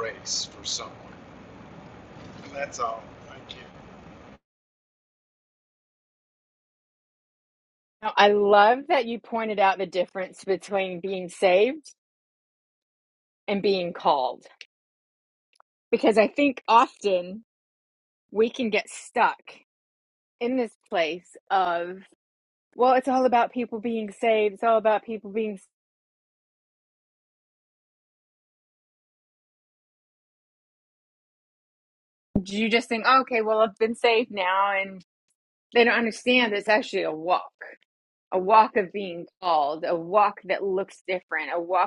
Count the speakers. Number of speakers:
2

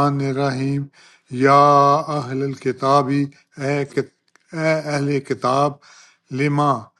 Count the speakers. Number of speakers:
1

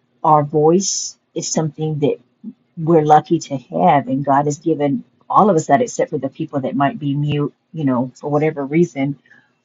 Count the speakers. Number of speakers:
1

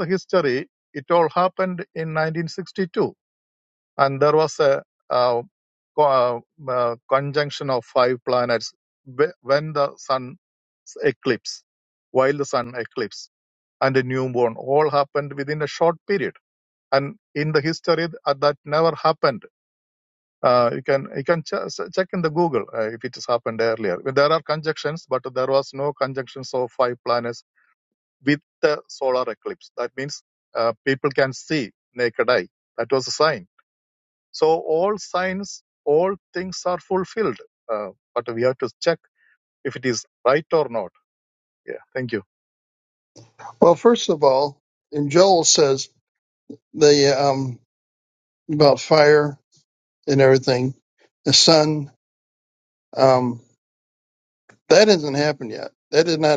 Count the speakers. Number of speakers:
2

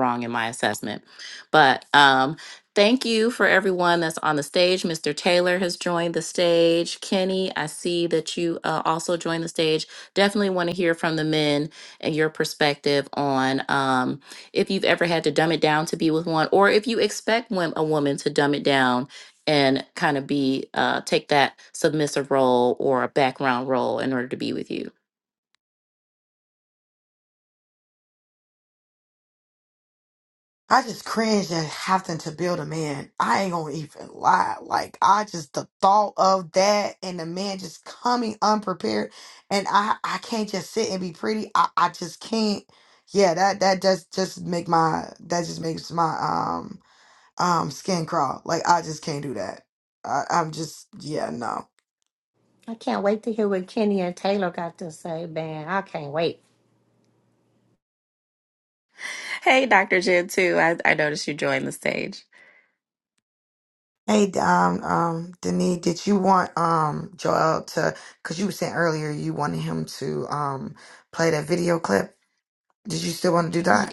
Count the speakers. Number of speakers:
3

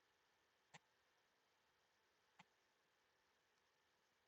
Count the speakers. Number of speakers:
0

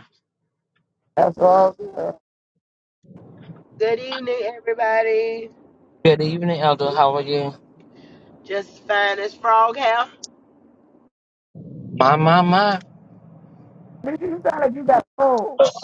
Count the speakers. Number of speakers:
3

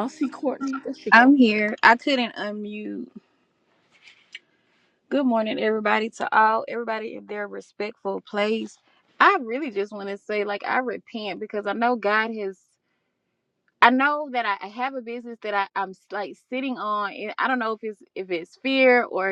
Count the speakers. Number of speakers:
2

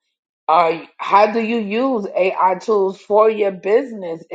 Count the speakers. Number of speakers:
1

